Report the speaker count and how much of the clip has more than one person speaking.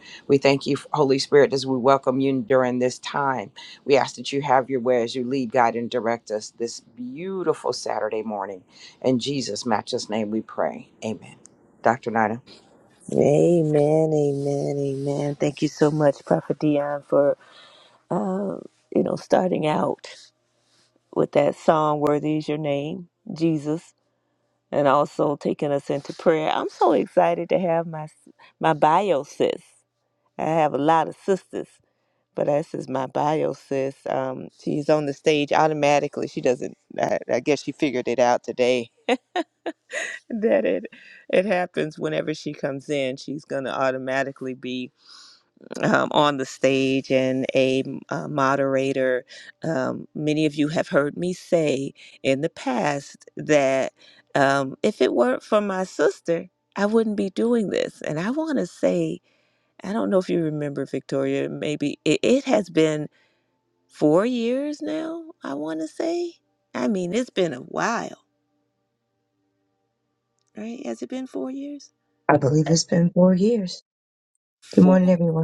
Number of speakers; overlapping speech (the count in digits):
3, about 1%